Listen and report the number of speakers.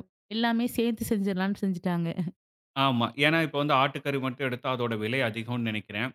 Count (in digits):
2